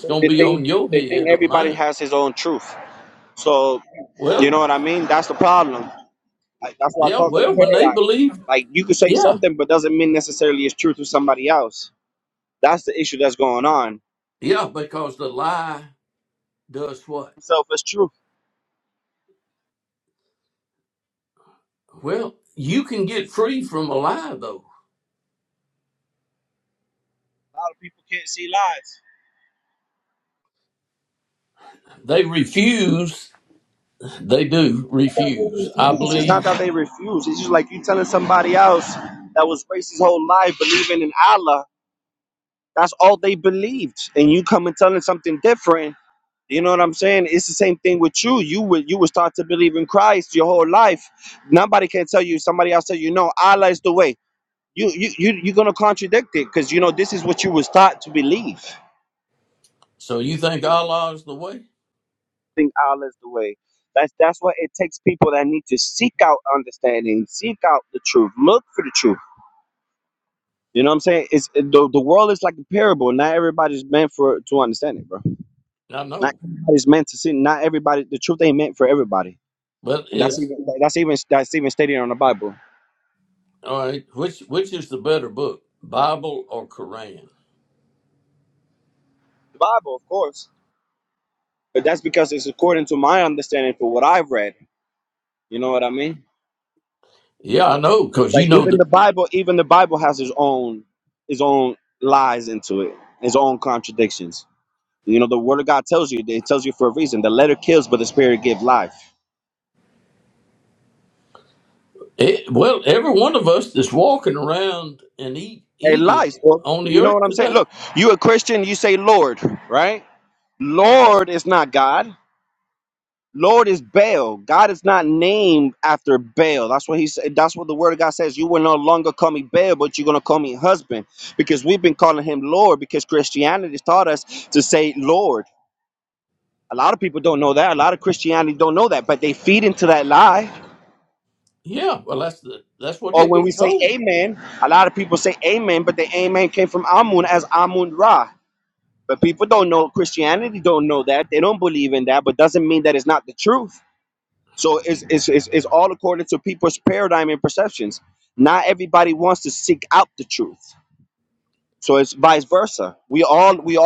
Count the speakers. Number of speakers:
2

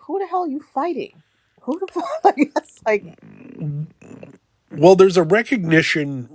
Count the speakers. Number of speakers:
2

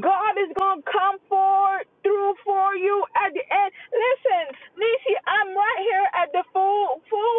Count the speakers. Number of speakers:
1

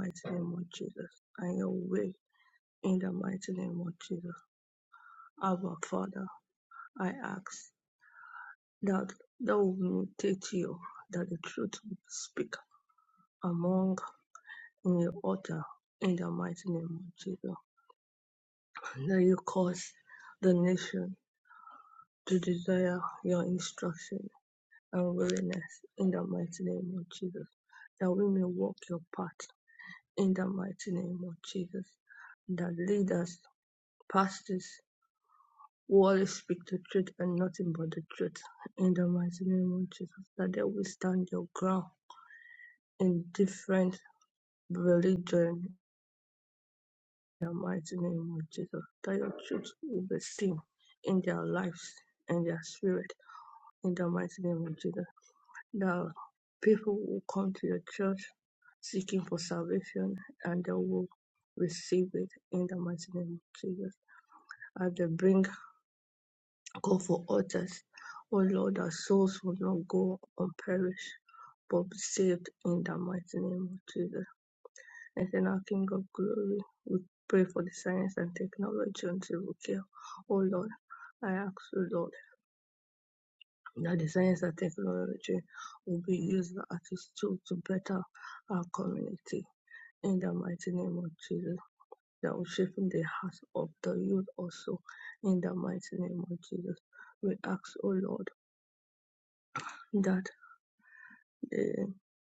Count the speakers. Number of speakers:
1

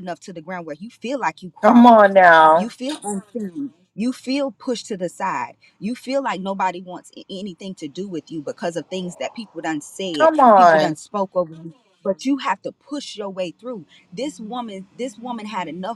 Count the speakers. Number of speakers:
2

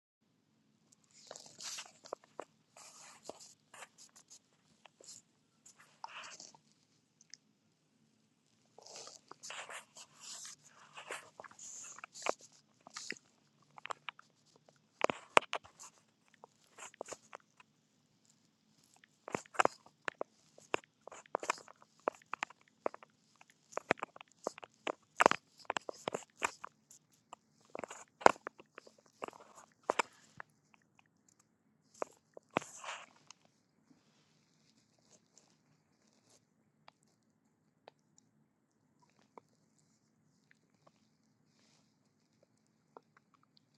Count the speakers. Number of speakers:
0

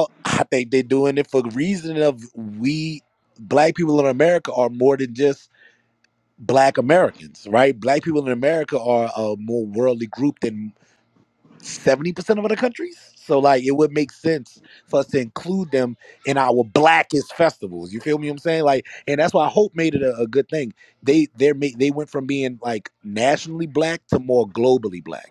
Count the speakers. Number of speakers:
1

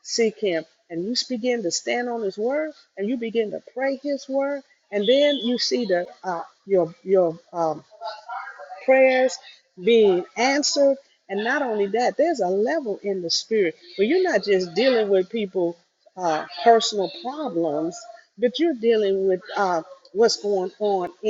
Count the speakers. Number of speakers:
1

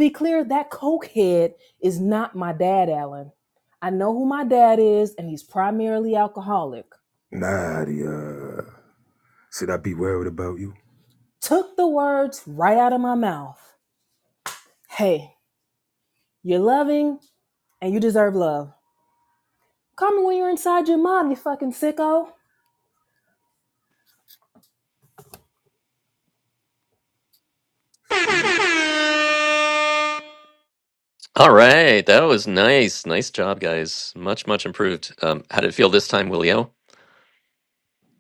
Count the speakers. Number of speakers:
3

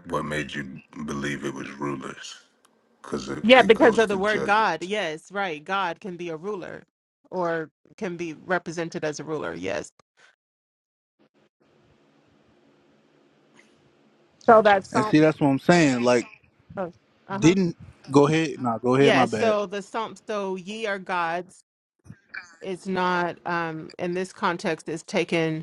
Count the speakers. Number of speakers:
3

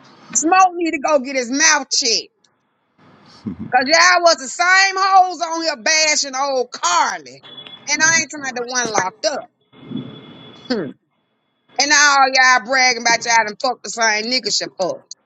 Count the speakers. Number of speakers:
1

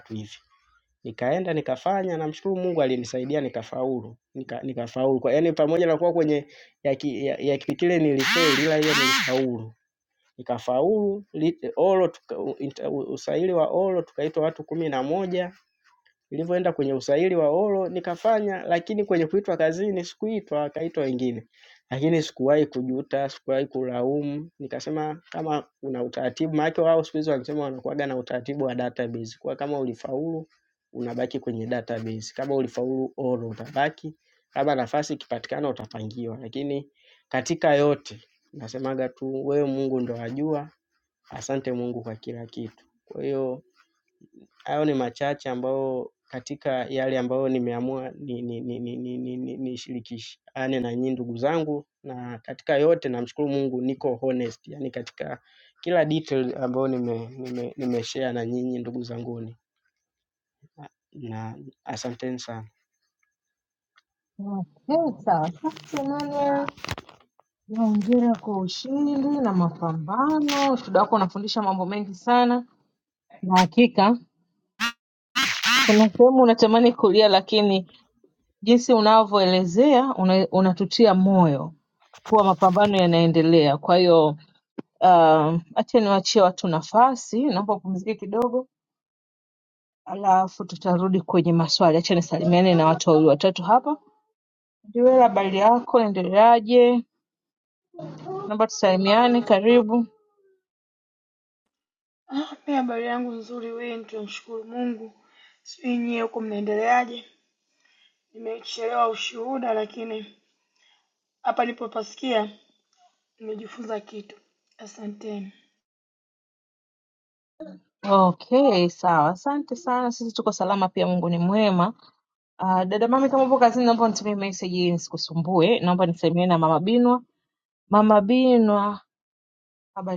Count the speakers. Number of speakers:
3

